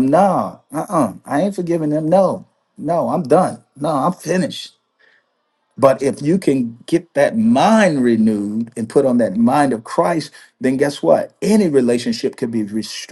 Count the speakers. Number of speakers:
1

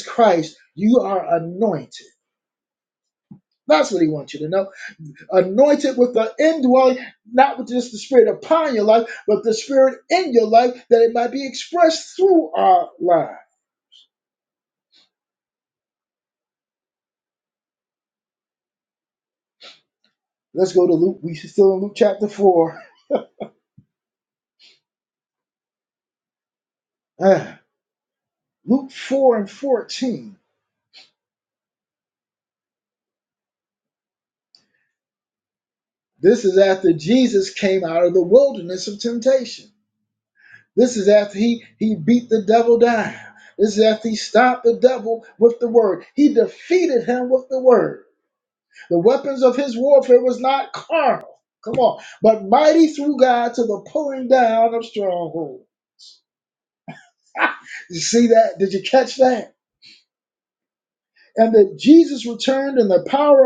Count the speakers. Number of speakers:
1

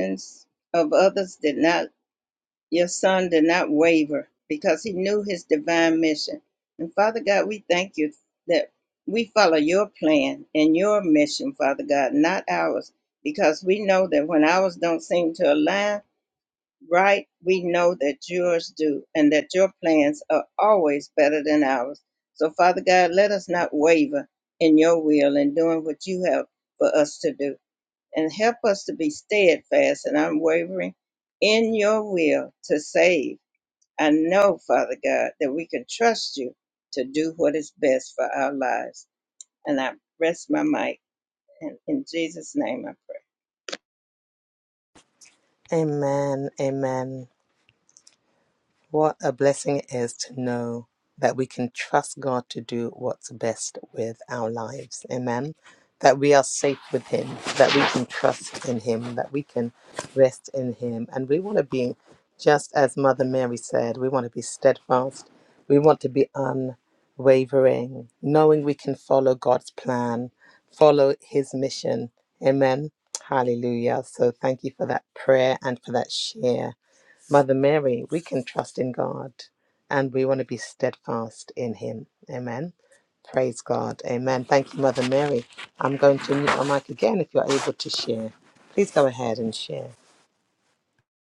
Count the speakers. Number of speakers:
2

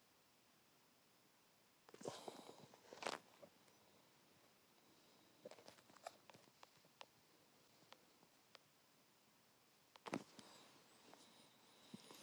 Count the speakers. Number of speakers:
0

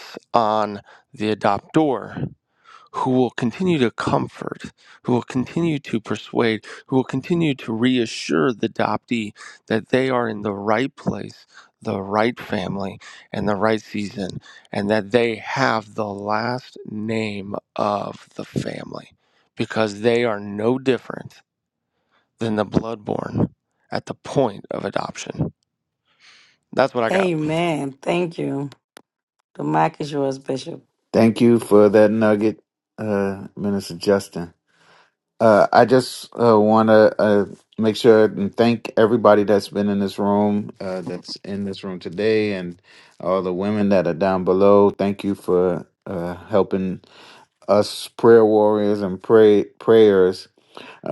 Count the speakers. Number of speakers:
3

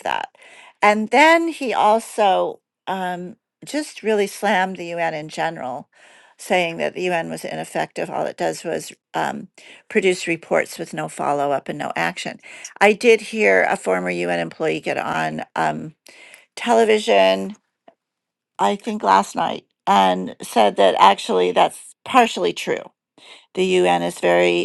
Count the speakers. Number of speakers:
1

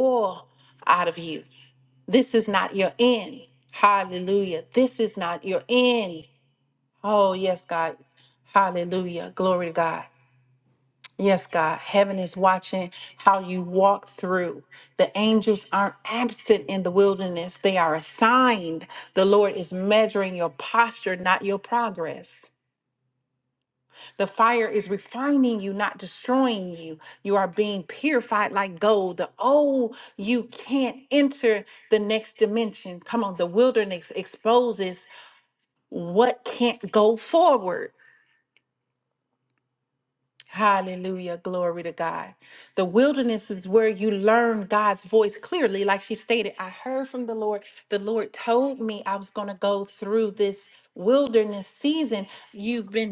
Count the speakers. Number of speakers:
1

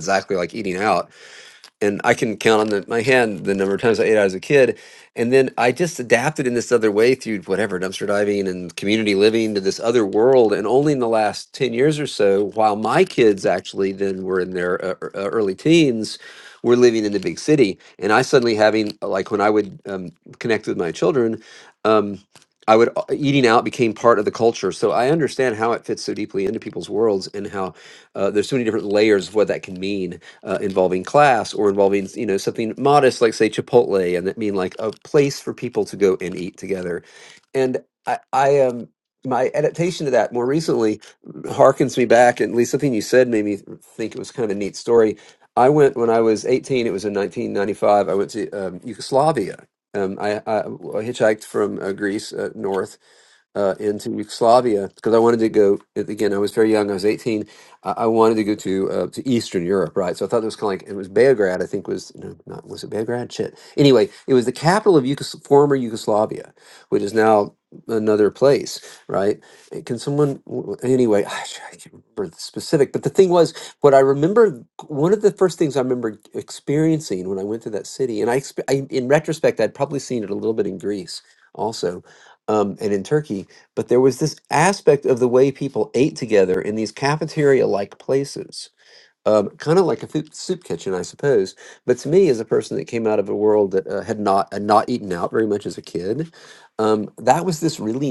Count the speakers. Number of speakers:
1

